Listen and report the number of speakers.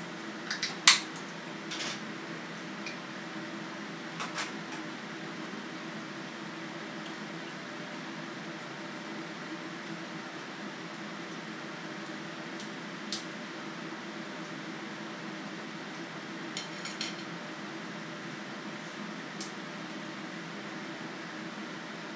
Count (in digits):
0